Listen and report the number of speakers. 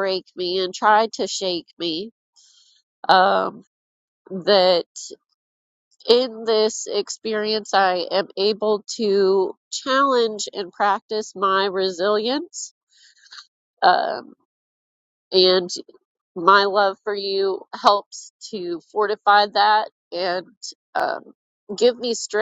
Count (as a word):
one